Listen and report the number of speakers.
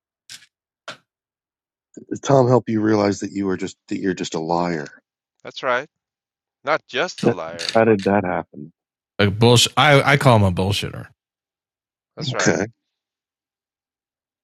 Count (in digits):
3